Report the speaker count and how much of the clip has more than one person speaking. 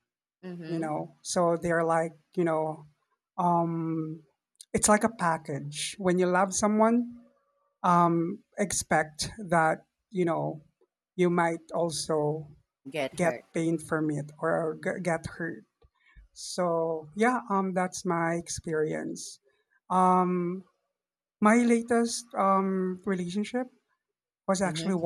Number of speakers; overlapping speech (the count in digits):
2, about 3%